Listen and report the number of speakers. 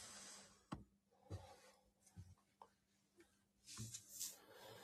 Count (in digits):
0